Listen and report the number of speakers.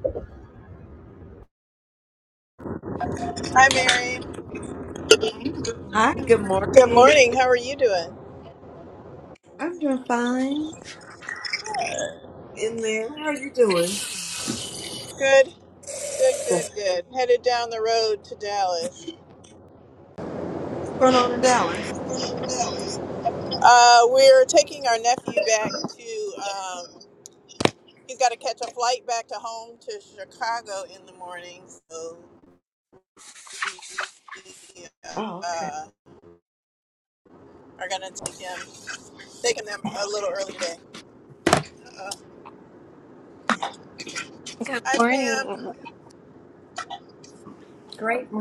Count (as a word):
three